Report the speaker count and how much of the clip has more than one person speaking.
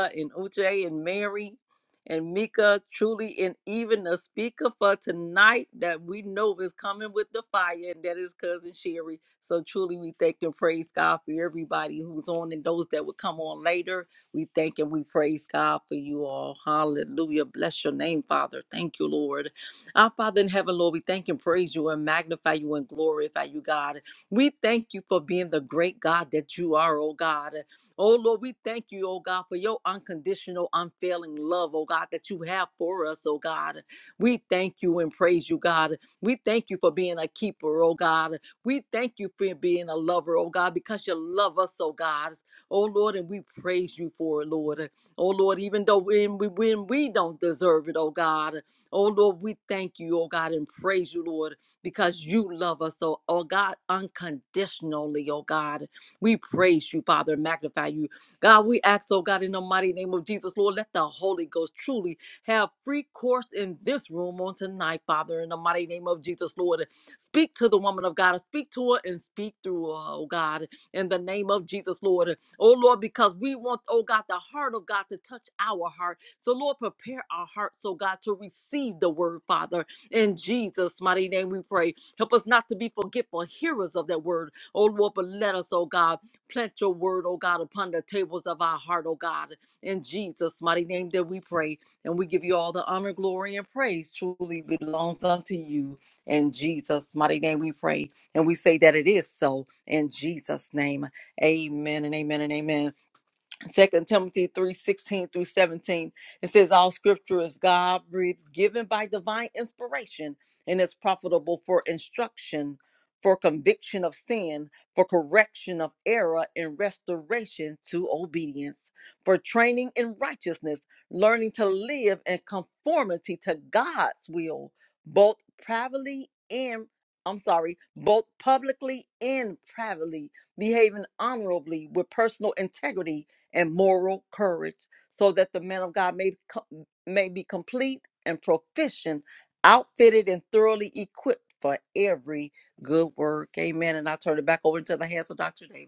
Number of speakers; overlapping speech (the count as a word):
one, no overlap